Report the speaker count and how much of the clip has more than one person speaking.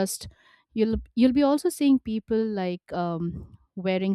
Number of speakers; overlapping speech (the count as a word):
one, no overlap